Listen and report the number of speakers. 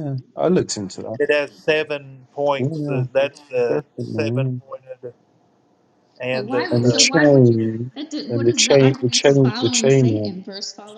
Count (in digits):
3